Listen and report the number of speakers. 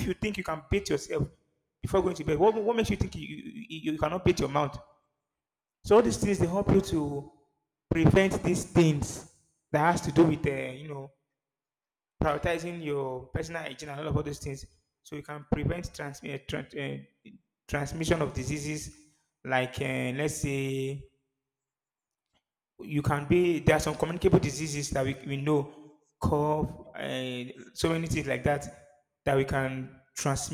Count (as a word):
one